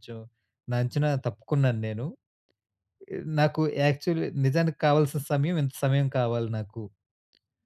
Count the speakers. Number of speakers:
one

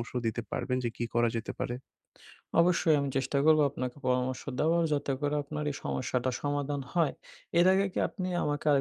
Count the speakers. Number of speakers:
two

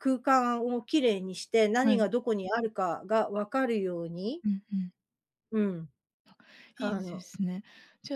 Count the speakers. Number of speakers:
two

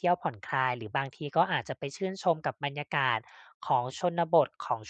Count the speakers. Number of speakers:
one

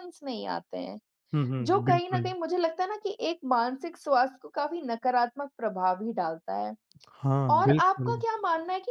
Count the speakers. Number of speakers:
two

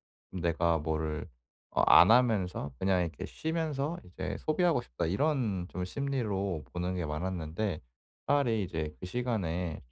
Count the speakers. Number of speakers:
one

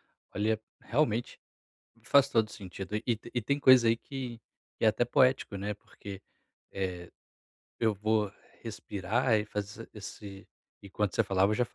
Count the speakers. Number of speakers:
one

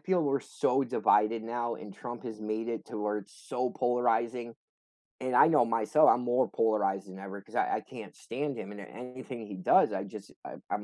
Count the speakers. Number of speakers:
one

